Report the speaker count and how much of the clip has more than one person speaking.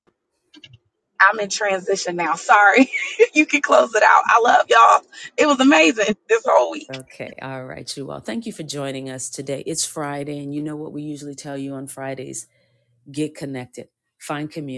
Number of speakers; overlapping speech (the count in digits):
2, under 1%